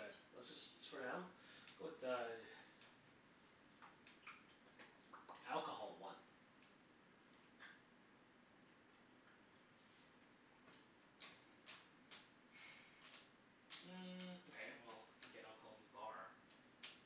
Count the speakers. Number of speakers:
2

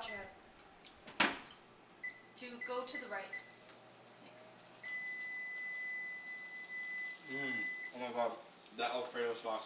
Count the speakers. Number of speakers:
2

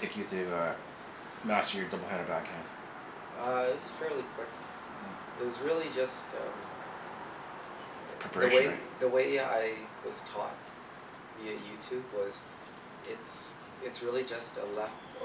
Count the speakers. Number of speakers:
2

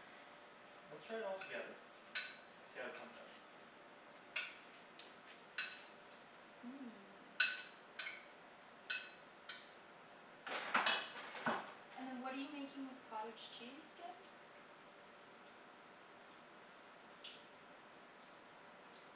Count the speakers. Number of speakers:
2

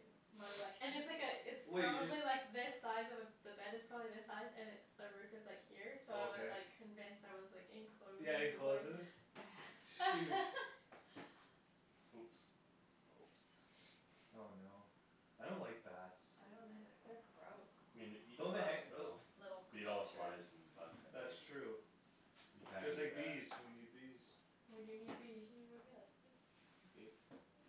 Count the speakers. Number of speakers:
4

